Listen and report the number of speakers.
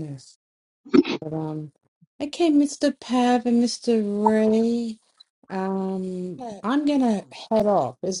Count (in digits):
1